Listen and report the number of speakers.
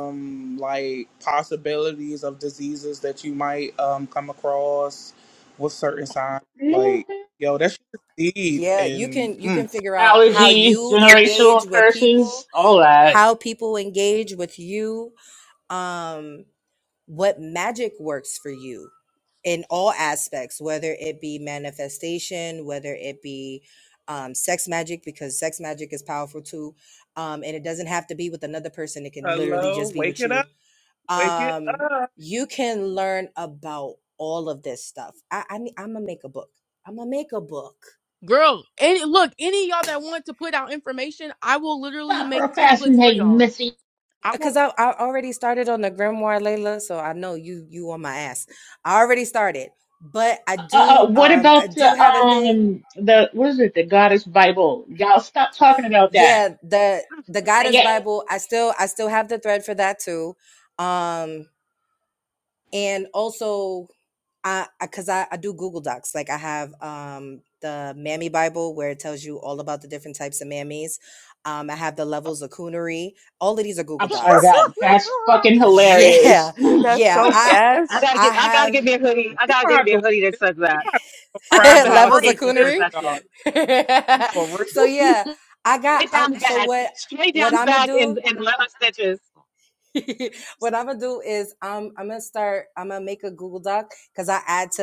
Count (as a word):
five